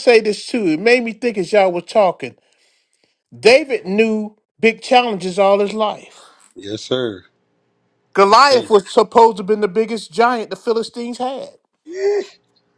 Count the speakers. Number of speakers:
2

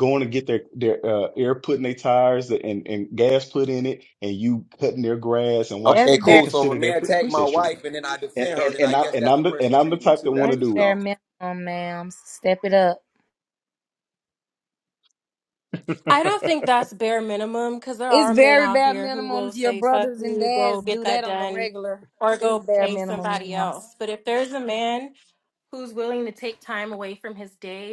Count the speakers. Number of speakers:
4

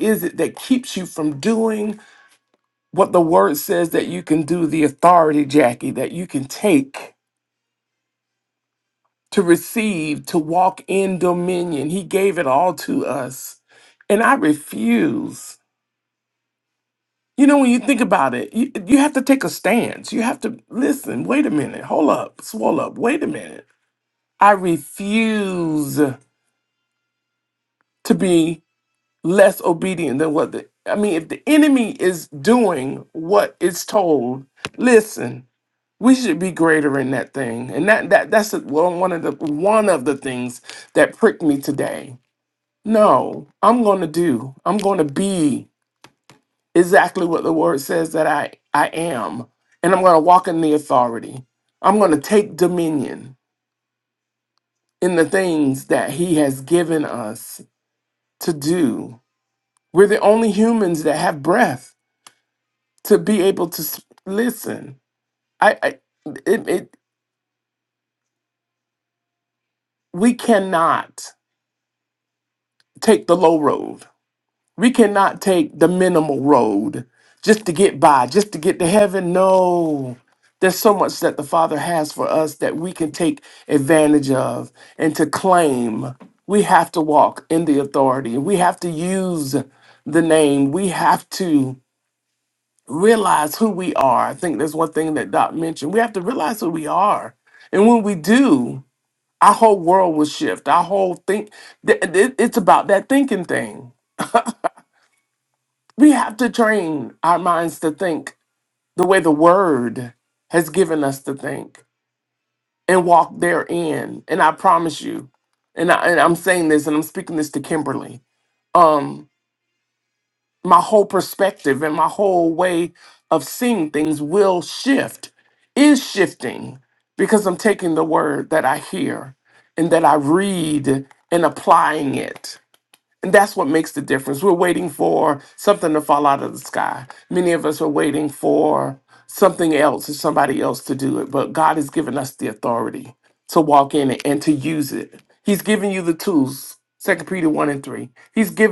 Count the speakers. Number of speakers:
1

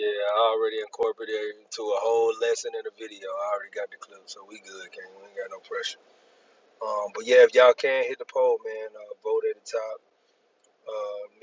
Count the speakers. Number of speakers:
1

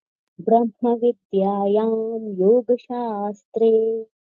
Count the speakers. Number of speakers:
1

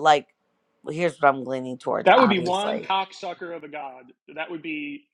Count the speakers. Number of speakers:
2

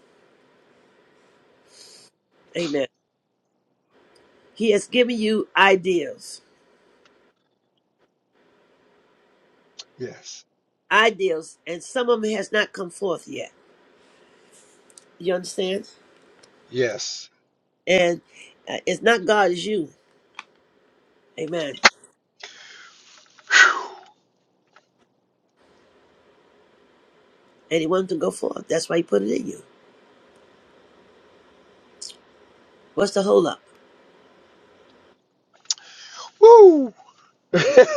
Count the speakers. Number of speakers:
2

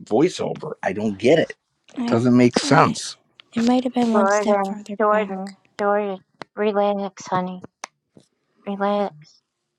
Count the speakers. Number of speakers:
3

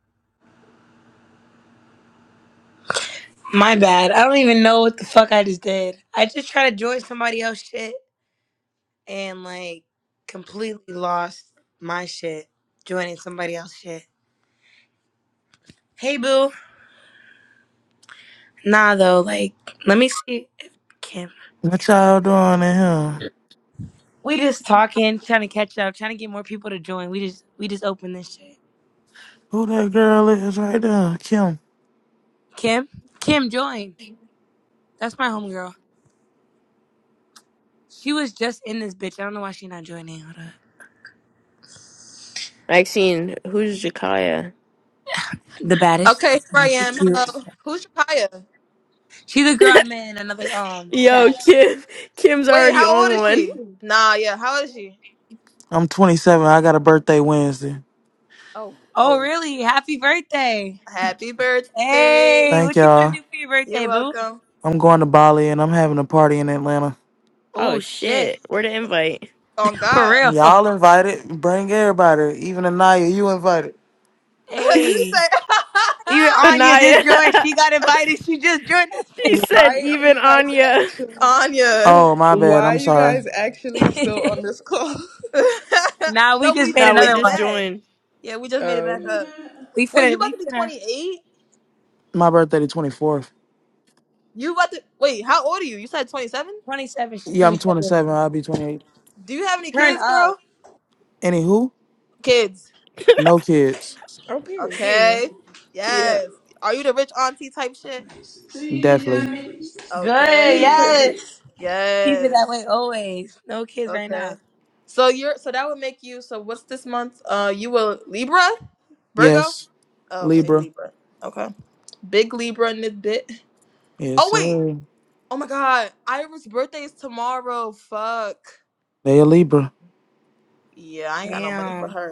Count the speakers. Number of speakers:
5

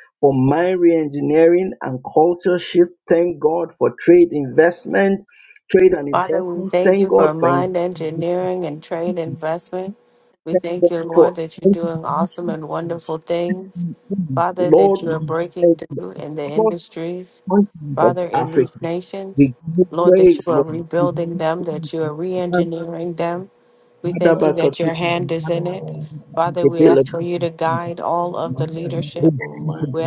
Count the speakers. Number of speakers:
3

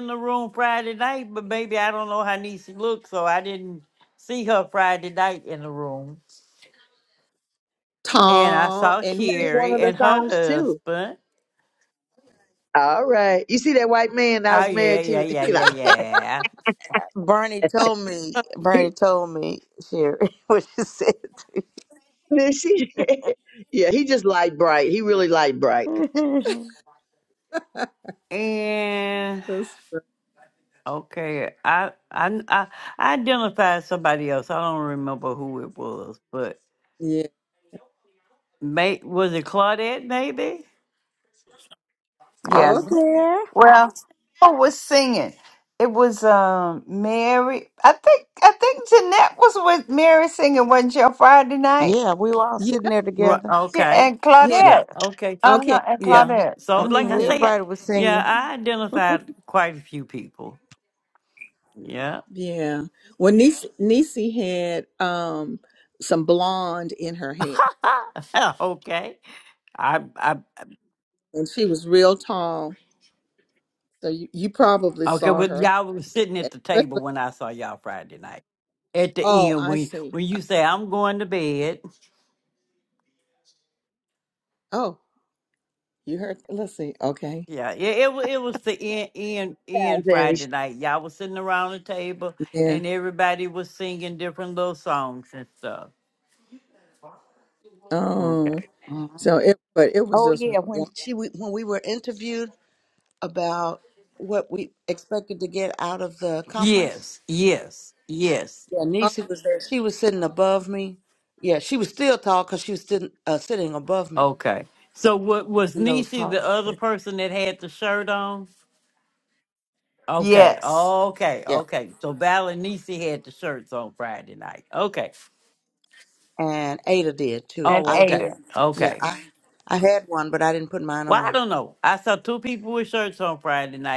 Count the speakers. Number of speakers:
5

